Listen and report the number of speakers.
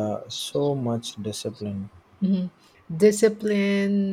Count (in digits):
2